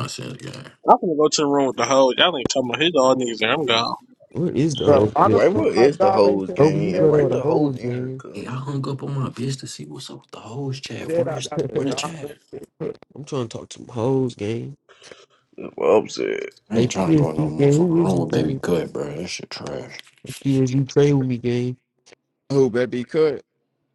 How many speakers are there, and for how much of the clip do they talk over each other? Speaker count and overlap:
5, about 27%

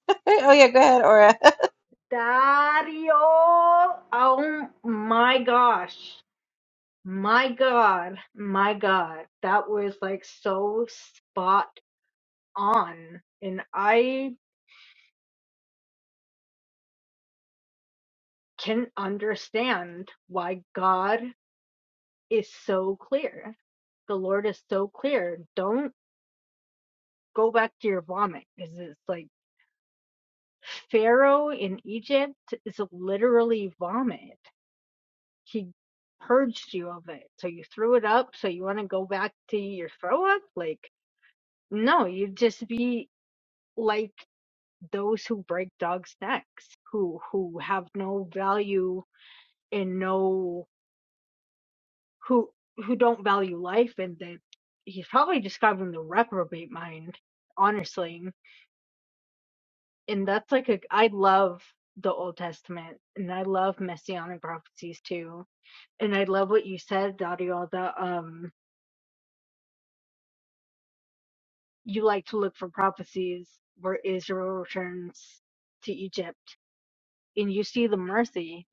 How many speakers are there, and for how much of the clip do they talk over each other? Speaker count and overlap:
2, no overlap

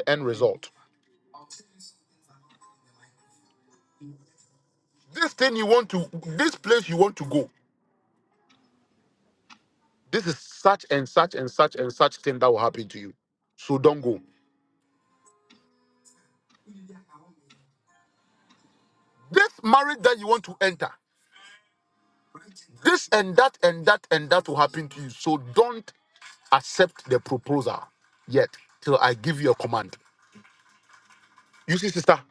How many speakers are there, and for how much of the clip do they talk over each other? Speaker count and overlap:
1, no overlap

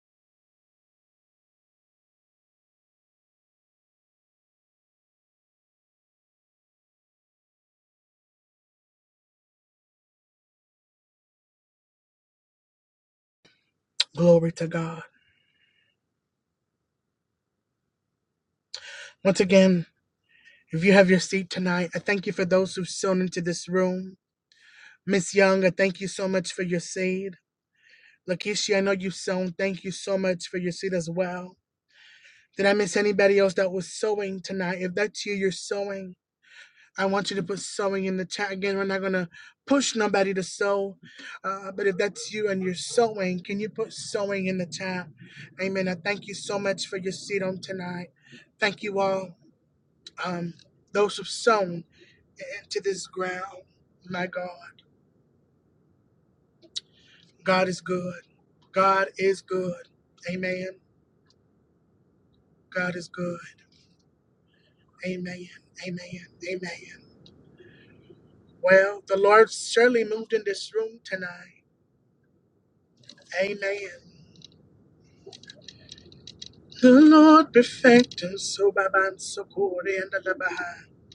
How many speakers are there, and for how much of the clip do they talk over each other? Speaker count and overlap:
1, no overlap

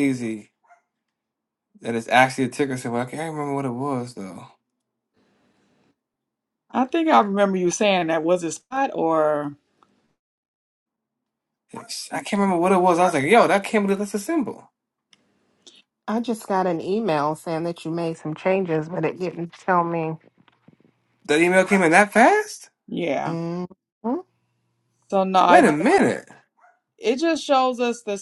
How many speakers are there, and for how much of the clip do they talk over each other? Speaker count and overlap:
3, about 1%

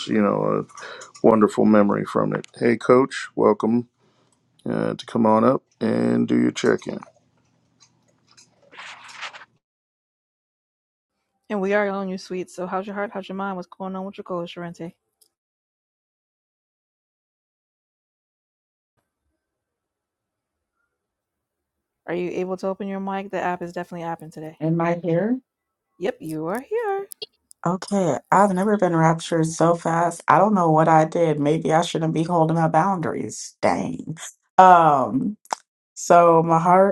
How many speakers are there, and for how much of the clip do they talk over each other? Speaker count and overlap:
3, no overlap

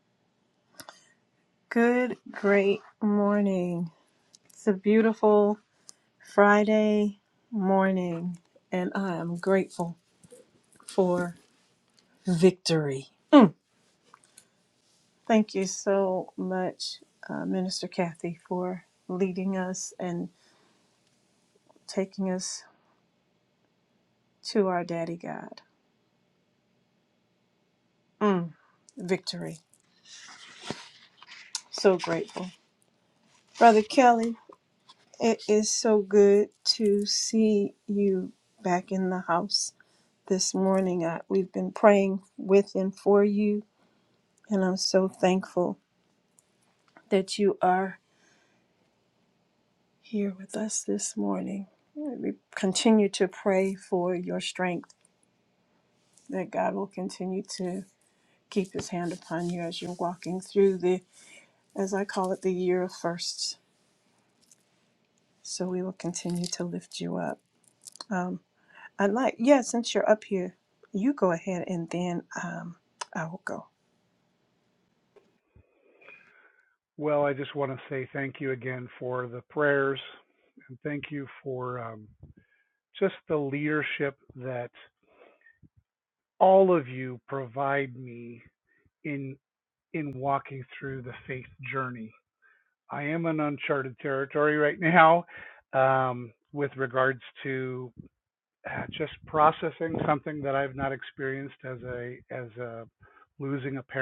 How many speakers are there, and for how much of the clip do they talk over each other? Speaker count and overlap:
2, no overlap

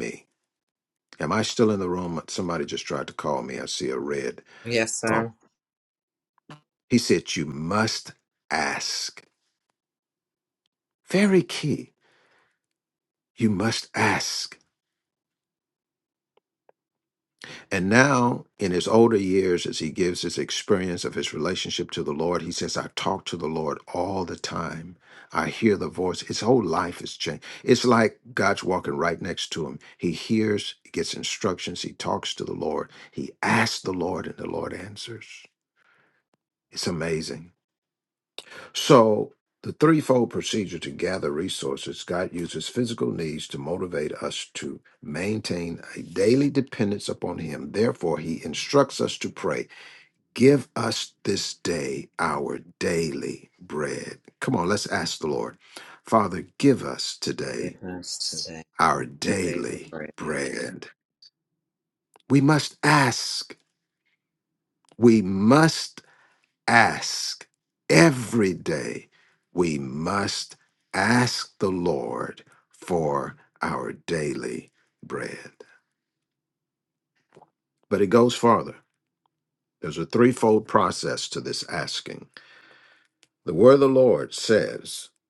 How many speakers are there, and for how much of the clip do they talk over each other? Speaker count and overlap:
2, about 1%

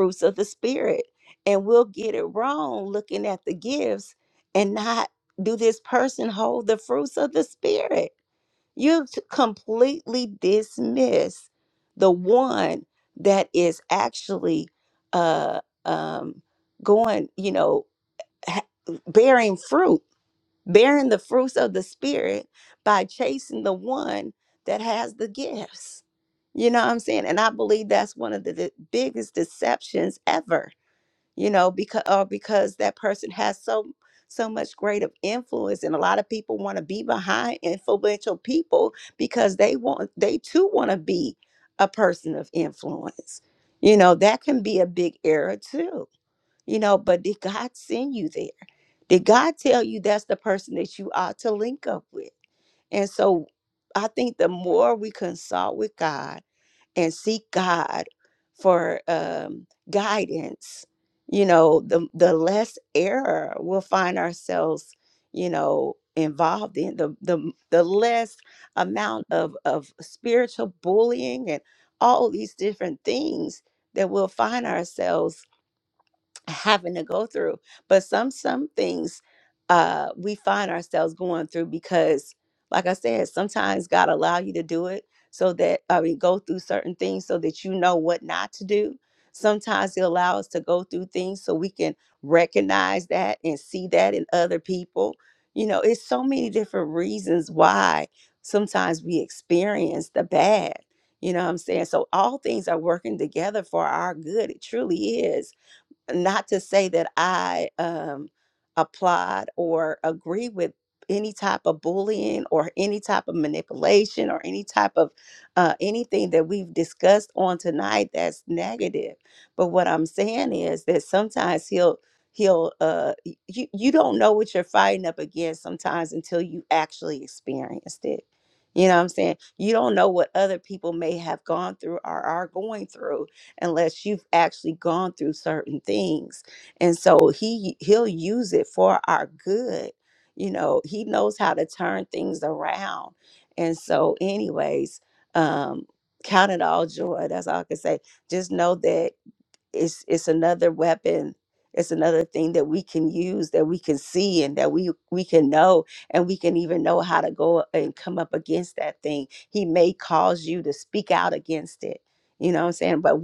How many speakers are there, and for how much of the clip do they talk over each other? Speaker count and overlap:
1, no overlap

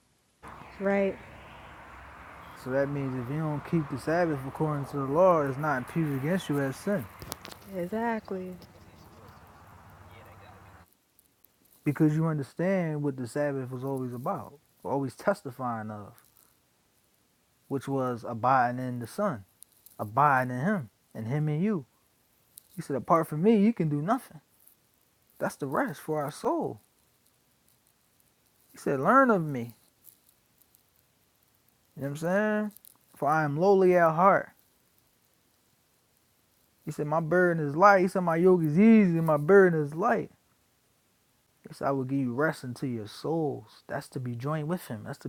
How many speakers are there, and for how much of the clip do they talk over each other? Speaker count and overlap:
2, no overlap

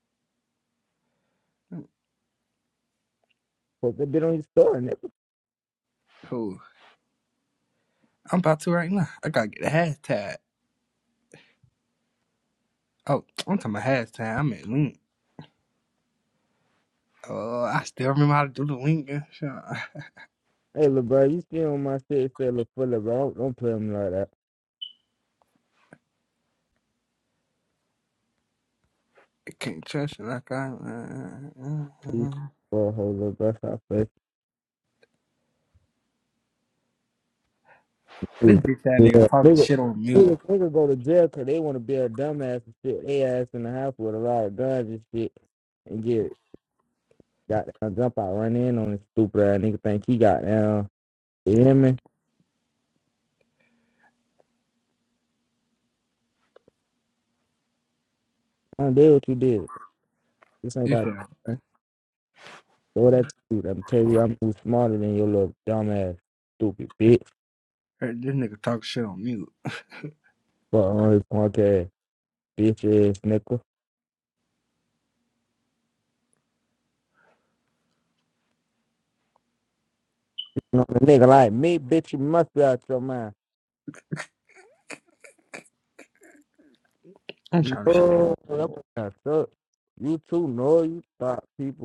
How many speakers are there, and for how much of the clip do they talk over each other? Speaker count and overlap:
2, about 2%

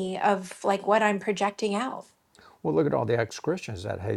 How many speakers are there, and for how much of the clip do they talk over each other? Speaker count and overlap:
2, no overlap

